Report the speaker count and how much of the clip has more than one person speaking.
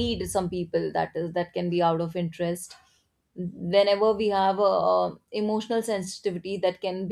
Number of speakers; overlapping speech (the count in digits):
1, no overlap